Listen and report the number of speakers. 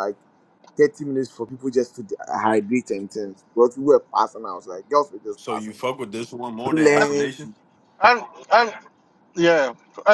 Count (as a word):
three